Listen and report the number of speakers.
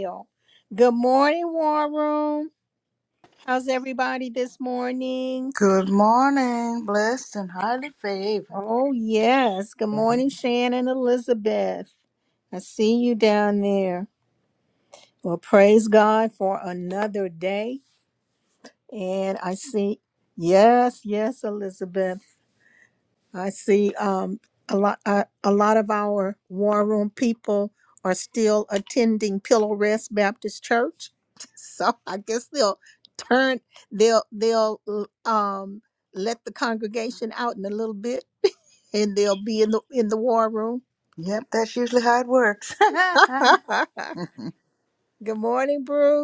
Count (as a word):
two